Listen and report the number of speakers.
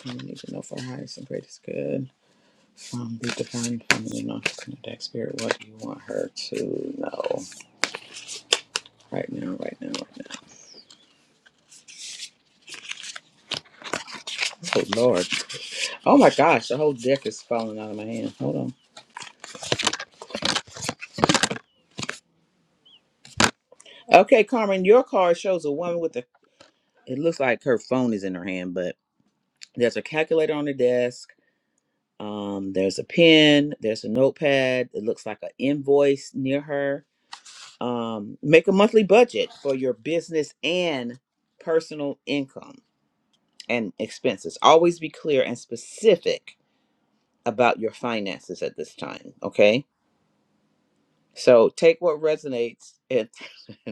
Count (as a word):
one